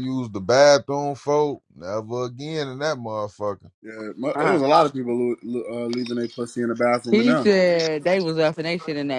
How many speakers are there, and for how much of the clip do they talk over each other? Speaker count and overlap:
3, about 7%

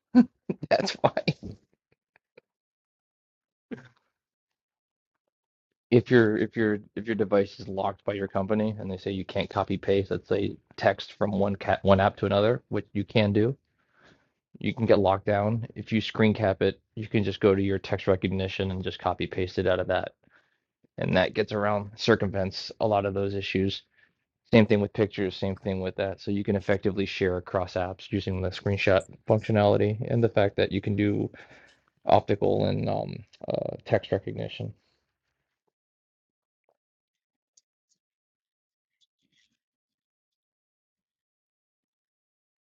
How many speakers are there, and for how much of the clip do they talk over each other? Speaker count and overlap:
1, no overlap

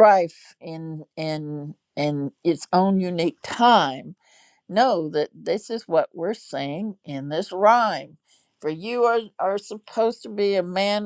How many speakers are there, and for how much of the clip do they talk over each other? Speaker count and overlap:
1, no overlap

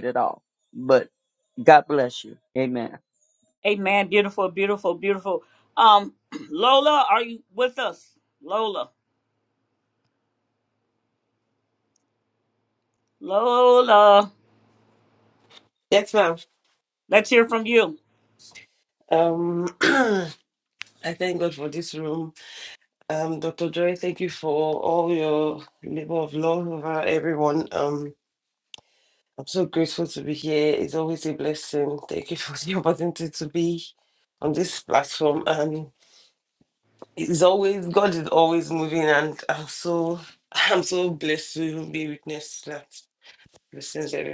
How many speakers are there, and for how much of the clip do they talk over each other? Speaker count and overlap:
3, no overlap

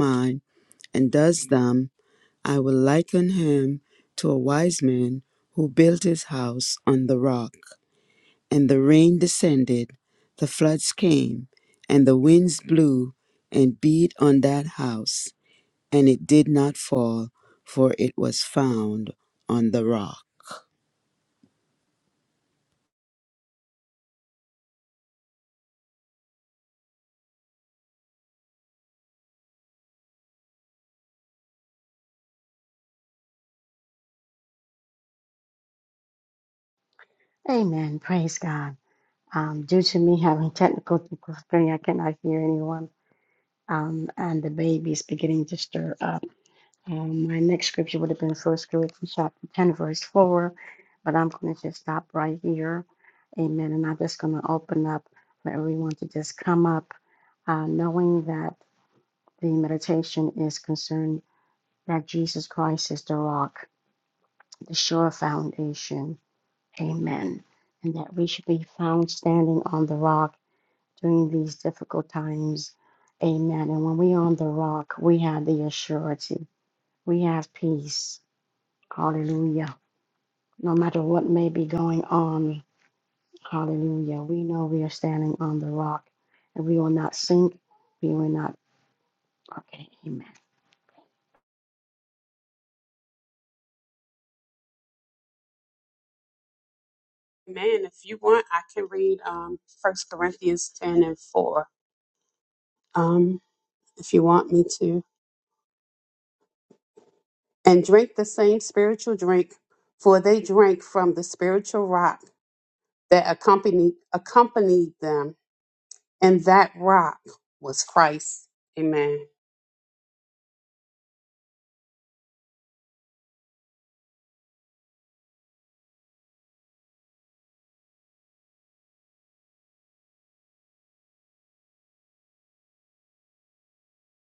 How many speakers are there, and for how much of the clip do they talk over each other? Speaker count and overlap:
3, no overlap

